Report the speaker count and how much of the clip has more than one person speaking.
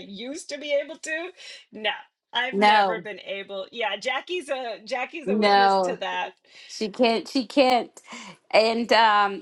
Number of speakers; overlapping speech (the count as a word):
two, about 13%